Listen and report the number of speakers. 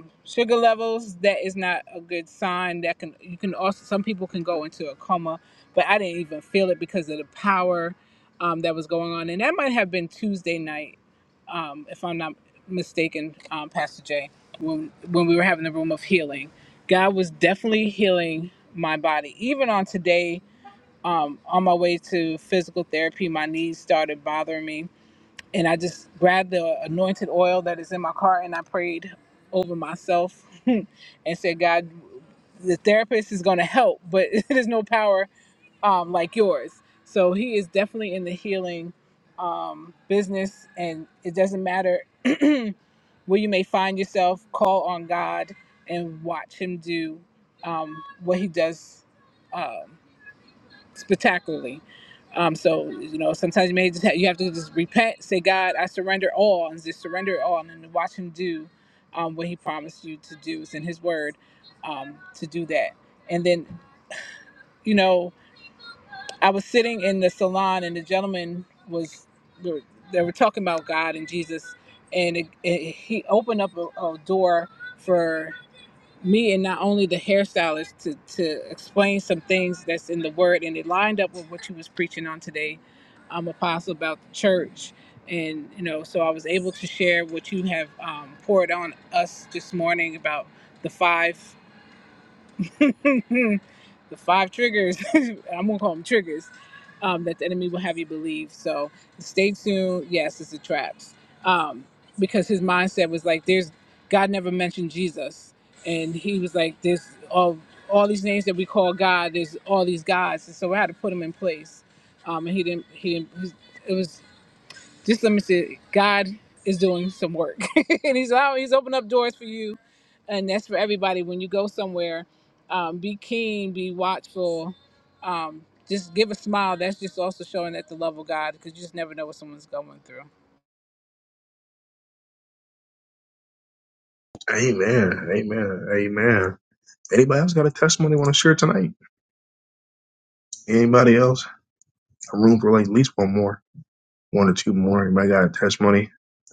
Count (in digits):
2